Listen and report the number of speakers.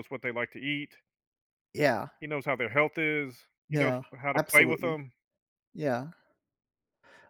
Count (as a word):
two